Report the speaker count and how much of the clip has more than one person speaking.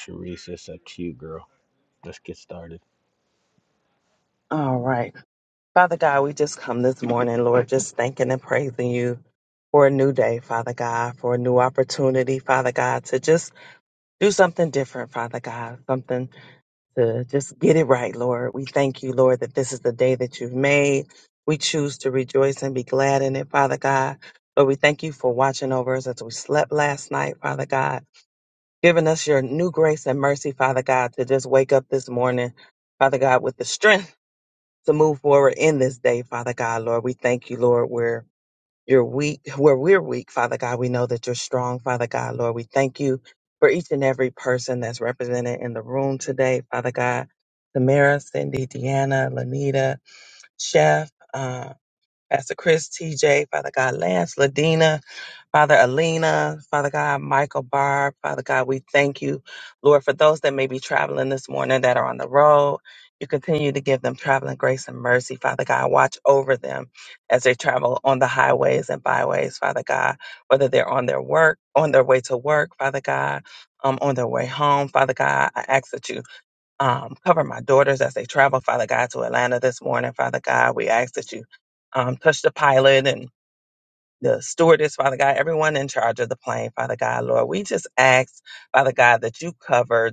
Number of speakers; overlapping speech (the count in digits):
2, no overlap